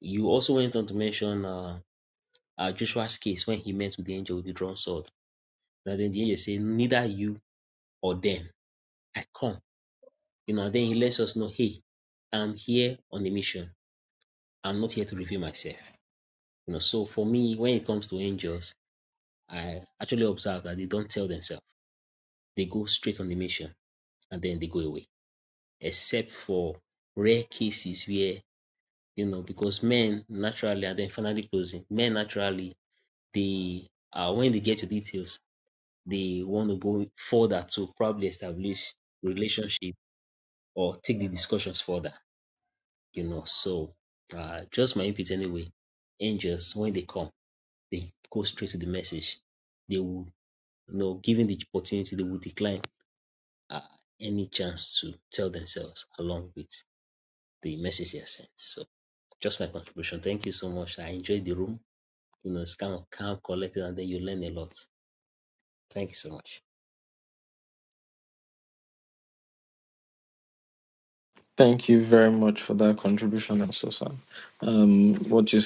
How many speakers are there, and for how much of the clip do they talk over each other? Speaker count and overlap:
2, no overlap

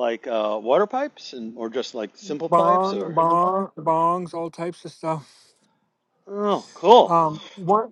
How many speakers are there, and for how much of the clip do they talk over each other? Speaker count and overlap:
2, about 9%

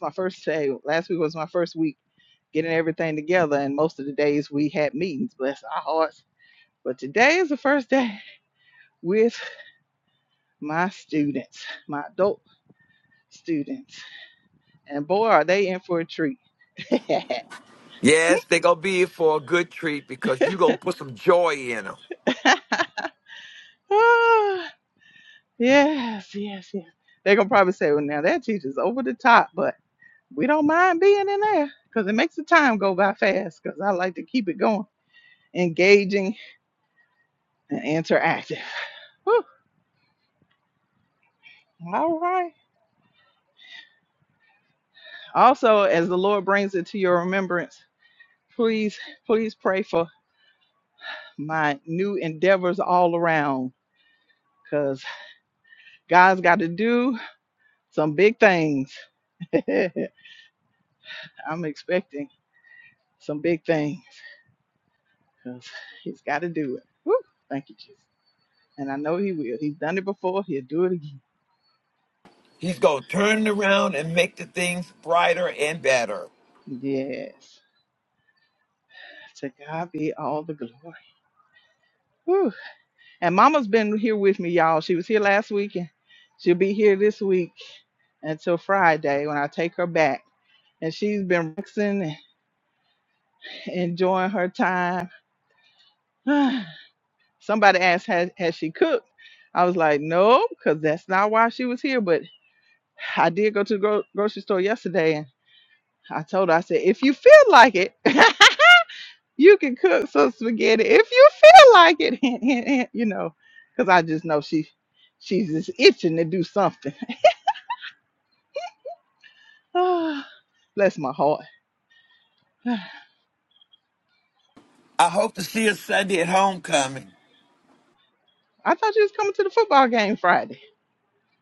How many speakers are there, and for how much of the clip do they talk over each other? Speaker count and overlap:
2, no overlap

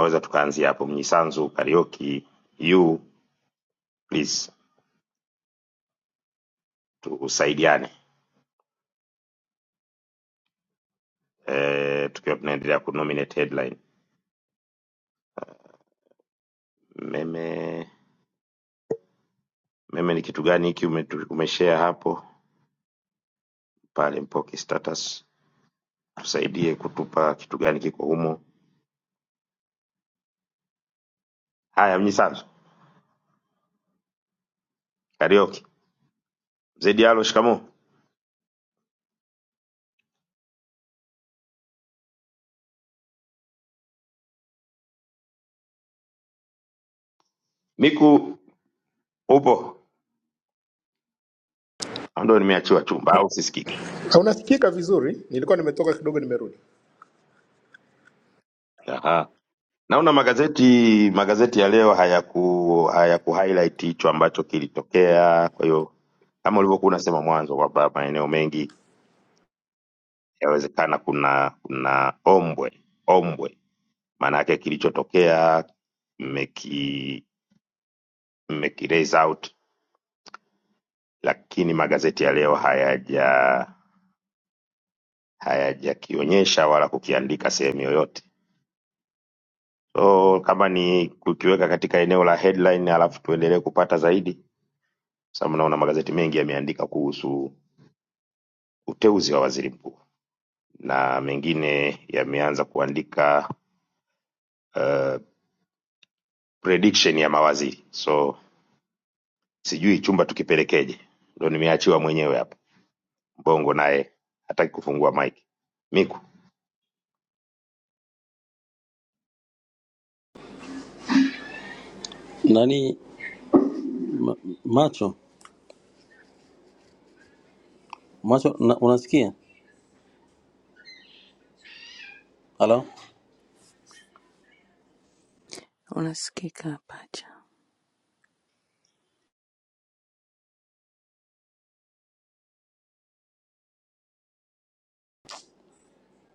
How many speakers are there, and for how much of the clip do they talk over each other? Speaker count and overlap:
4, no overlap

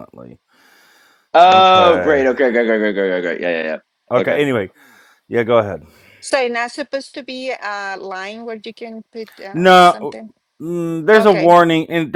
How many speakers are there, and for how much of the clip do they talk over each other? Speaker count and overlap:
3, about 16%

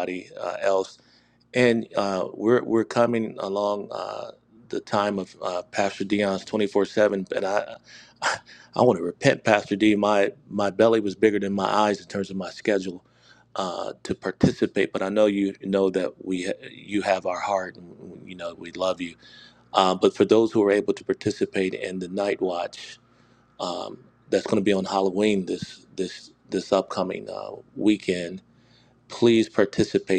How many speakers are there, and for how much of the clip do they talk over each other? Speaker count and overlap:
1, no overlap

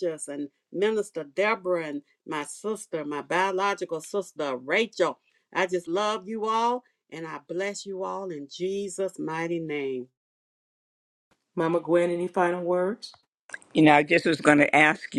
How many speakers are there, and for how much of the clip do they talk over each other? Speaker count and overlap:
3, no overlap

